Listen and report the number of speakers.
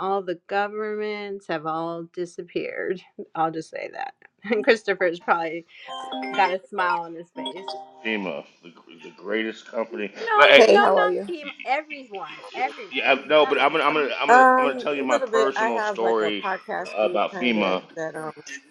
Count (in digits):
3